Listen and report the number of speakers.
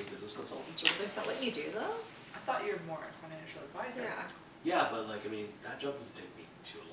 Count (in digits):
3